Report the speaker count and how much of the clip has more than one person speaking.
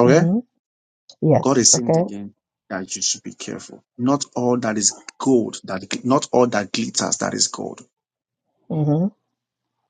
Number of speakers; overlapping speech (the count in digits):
2, about 9%